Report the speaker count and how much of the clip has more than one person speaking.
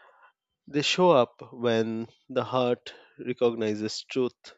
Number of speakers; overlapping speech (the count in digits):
1, no overlap